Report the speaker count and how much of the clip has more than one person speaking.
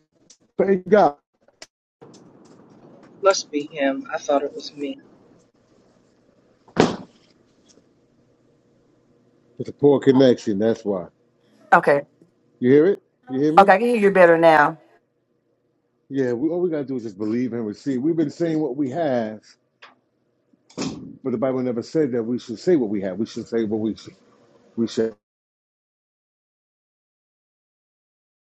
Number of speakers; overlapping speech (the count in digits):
3, about 1%